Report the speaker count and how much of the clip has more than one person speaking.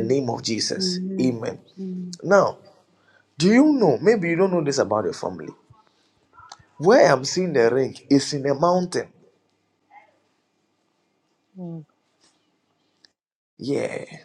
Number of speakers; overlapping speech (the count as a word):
two, about 5%